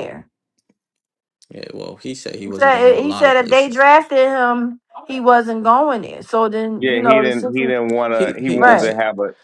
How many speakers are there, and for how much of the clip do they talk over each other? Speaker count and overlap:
3, about 31%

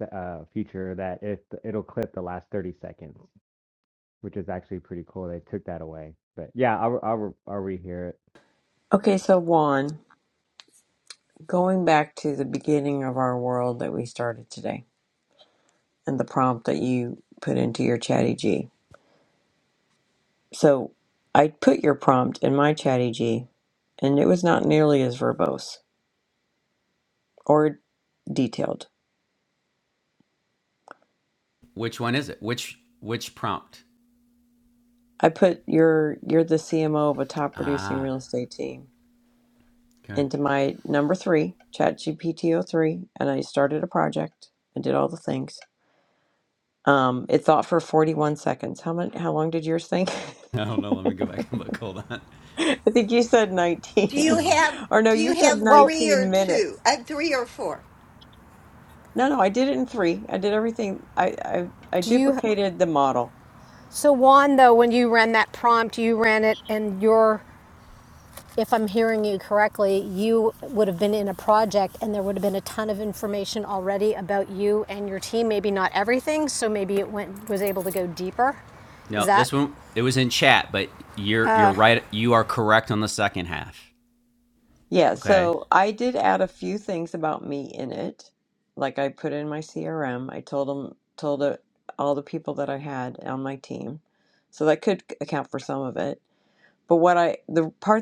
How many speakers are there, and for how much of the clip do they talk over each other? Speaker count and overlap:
5, about 4%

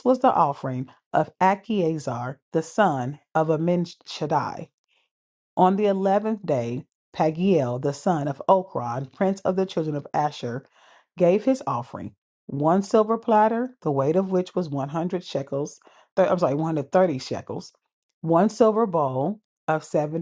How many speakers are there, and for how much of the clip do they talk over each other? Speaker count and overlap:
1, no overlap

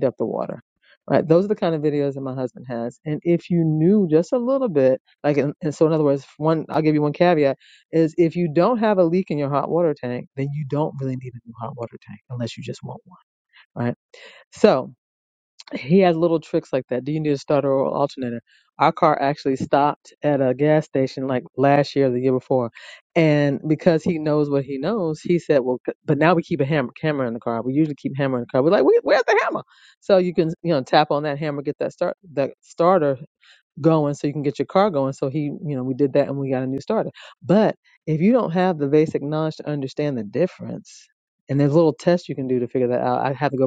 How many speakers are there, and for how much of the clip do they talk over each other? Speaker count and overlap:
1, no overlap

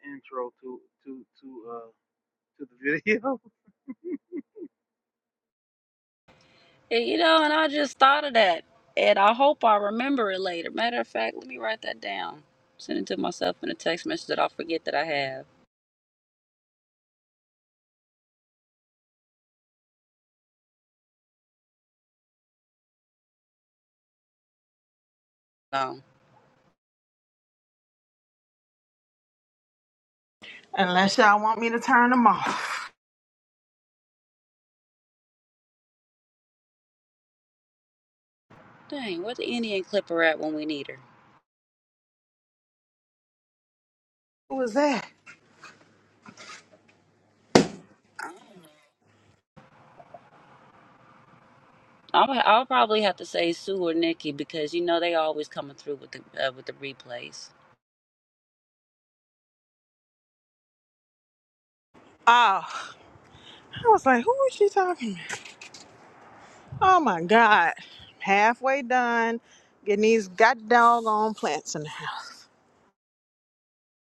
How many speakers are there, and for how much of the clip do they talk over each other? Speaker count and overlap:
3, no overlap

